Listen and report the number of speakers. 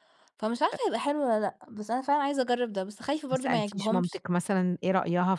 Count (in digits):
2